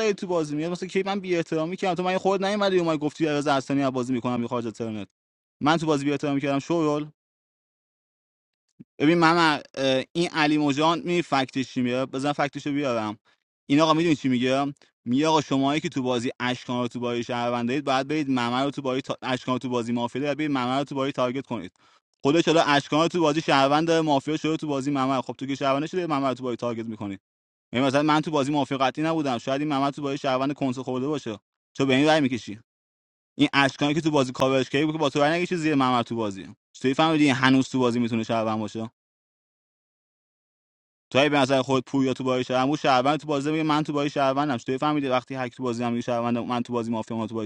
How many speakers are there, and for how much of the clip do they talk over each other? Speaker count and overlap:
1, no overlap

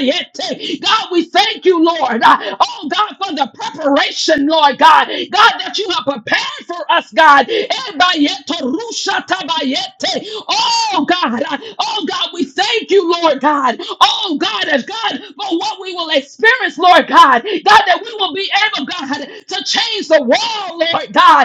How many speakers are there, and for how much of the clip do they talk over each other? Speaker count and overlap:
1, no overlap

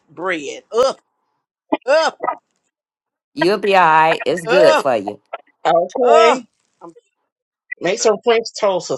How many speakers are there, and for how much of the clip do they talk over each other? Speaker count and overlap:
3, about 8%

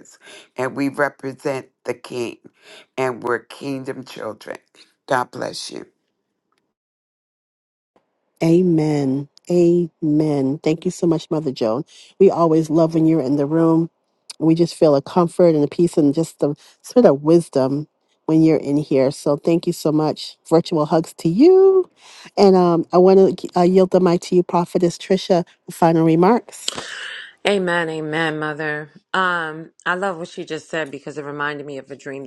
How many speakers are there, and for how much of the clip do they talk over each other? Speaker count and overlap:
3, no overlap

